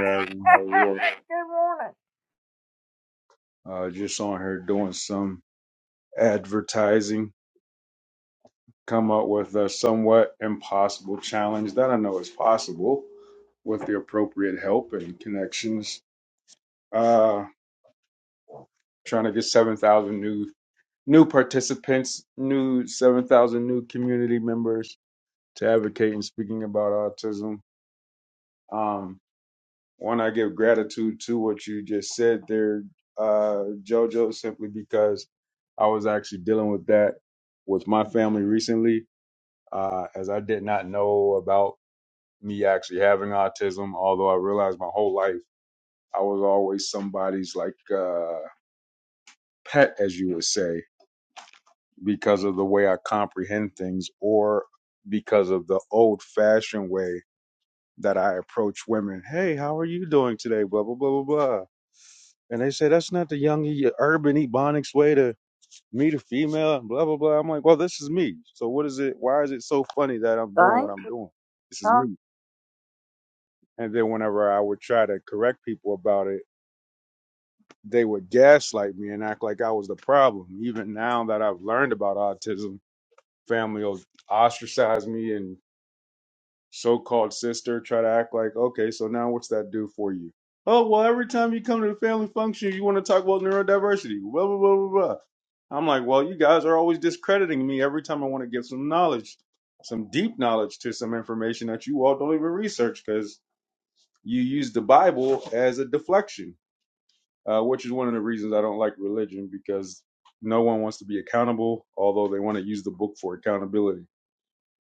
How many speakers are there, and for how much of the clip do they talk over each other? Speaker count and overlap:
two, about 1%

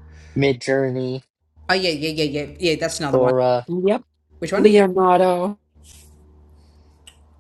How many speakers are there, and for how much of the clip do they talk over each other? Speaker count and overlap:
three, about 5%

